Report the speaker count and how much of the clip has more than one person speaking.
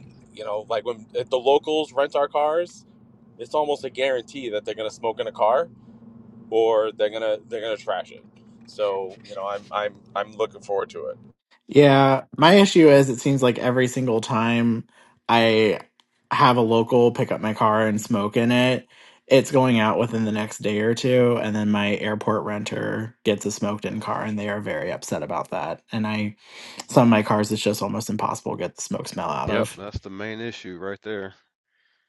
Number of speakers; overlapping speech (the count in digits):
3, about 1%